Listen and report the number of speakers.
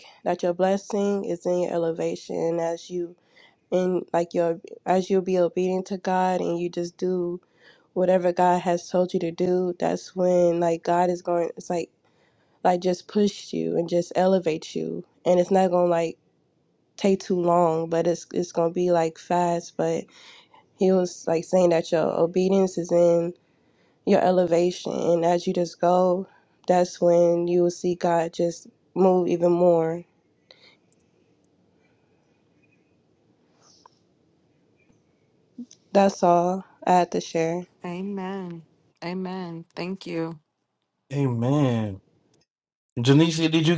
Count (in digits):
3